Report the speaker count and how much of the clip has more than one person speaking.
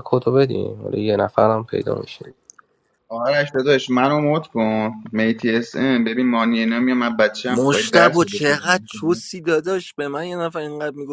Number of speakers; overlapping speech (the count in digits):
3, about 10%